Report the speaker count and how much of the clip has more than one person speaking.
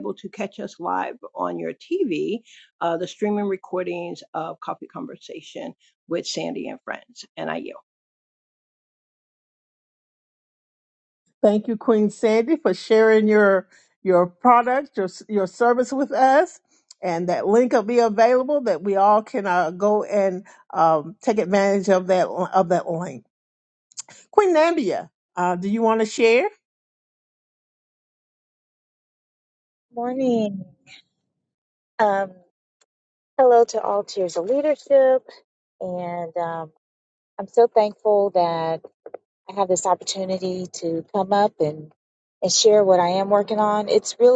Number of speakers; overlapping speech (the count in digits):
3, no overlap